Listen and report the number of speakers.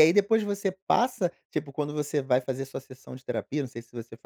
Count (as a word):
one